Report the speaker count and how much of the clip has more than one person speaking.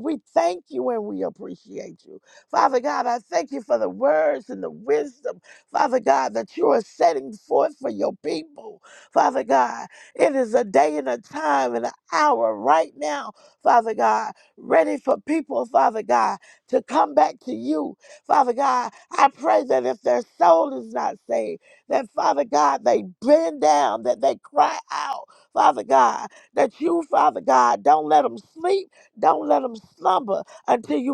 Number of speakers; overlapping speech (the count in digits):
1, no overlap